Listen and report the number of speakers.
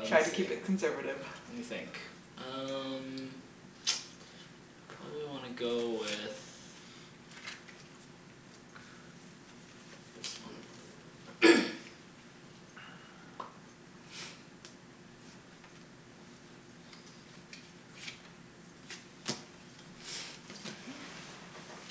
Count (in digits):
2